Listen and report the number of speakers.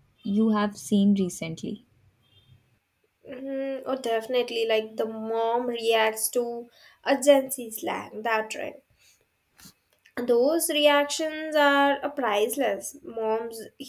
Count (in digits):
2